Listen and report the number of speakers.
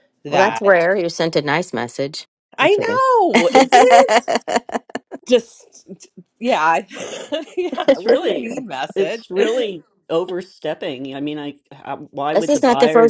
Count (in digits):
3